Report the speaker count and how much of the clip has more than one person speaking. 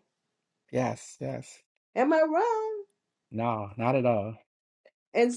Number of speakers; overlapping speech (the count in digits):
2, no overlap